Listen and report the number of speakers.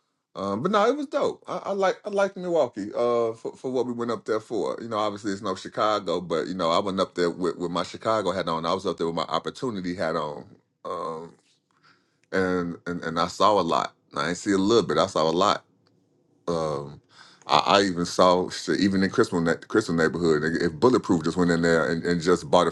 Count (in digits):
1